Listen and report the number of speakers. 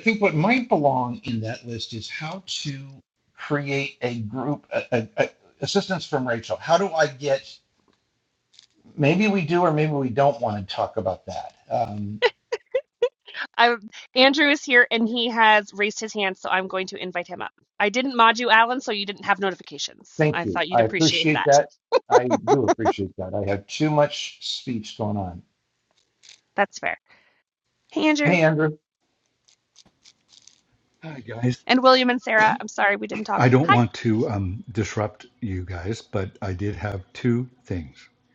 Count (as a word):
three